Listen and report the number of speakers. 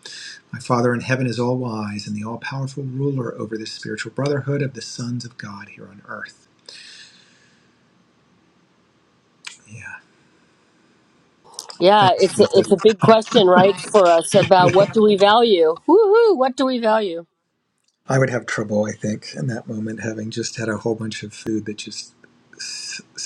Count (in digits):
2